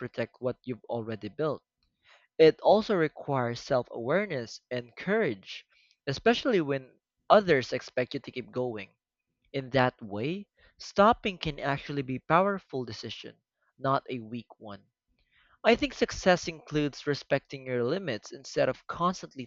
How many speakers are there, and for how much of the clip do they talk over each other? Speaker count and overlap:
one, no overlap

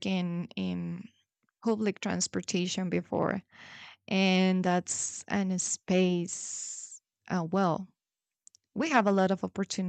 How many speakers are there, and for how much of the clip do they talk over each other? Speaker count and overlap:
one, no overlap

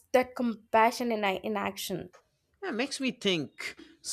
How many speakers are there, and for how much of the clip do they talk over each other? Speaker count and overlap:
two, no overlap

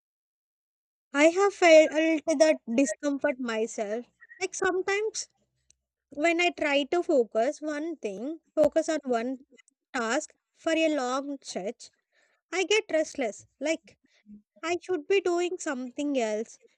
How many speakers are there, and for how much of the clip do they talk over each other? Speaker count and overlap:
one, no overlap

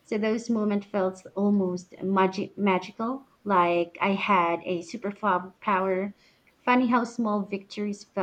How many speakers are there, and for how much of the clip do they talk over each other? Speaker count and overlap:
one, no overlap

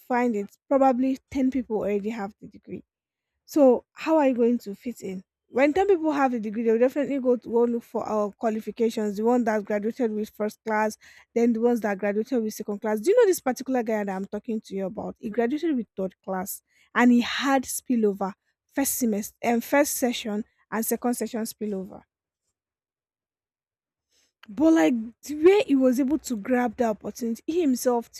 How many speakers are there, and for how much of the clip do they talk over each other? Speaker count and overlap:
one, no overlap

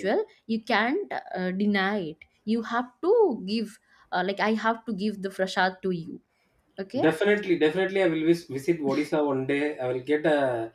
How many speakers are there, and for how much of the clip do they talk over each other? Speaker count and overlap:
two, about 2%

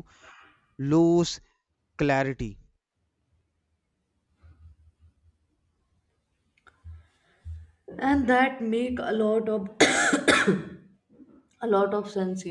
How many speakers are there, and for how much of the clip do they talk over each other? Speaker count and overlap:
two, no overlap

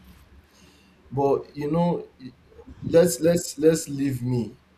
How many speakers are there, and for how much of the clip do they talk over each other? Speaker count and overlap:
one, no overlap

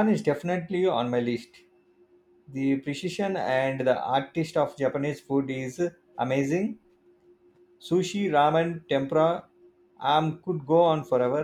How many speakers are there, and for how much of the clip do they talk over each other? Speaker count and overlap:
one, no overlap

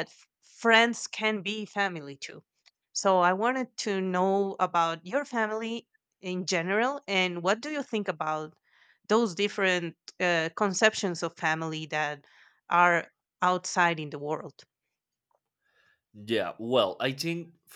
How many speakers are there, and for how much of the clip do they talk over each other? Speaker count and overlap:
two, no overlap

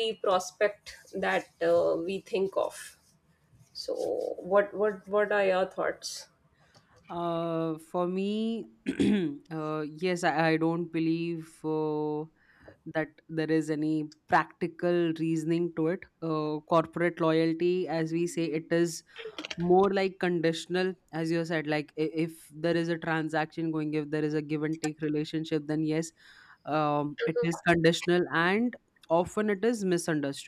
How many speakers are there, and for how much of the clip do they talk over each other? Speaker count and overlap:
two, no overlap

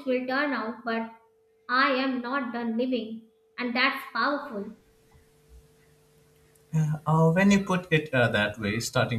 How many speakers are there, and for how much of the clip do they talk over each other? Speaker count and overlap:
two, no overlap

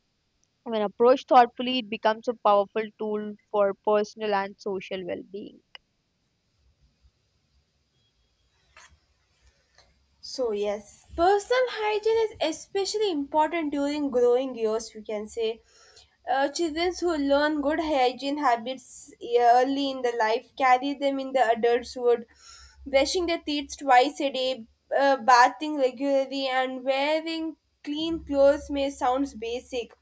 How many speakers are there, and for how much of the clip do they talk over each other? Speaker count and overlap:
two, no overlap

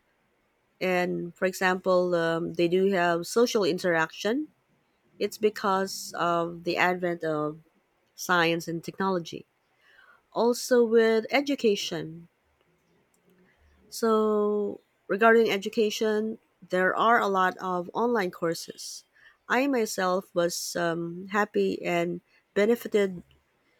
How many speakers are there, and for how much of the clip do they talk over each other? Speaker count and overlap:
one, no overlap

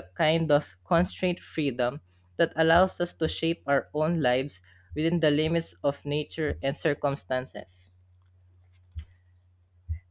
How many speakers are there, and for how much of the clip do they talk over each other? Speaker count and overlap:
one, no overlap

